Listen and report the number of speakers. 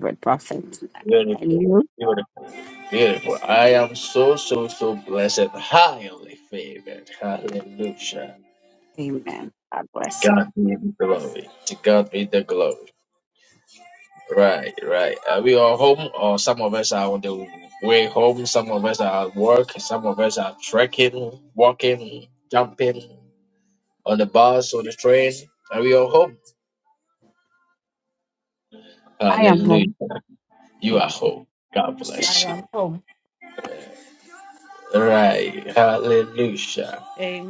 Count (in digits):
3